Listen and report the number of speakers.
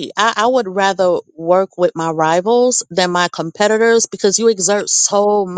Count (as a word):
one